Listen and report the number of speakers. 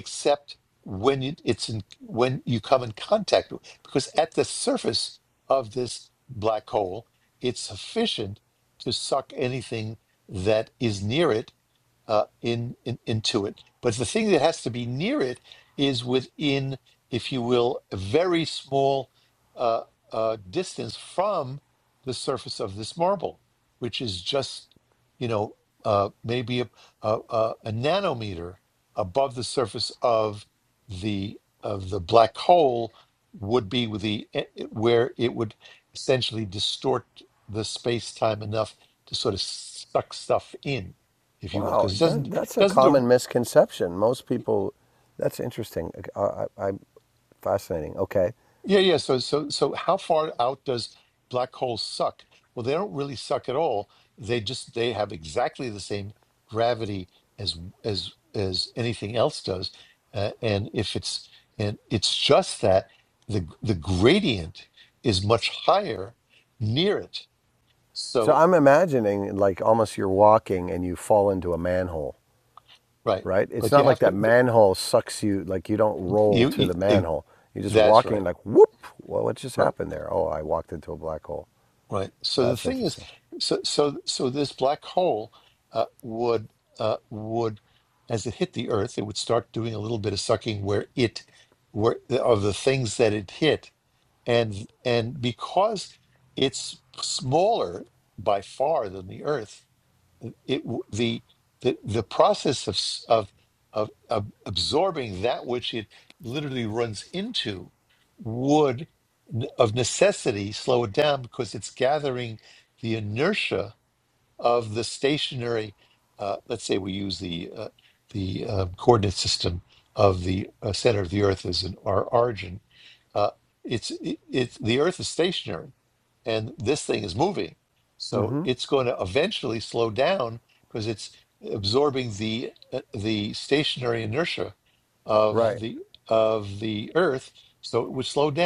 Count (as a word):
two